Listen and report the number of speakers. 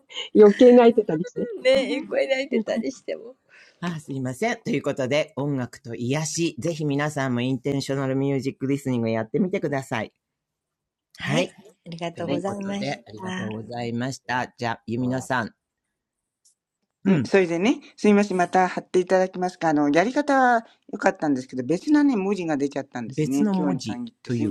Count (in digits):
4